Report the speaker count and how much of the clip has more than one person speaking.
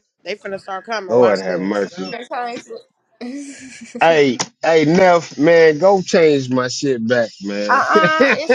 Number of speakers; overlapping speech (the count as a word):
three, about 9%